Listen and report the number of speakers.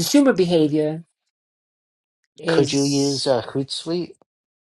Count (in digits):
2